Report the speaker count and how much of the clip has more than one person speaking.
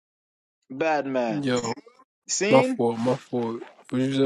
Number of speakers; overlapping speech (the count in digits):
2, about 9%